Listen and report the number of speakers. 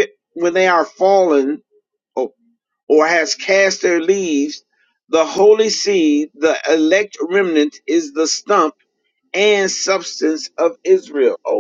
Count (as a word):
one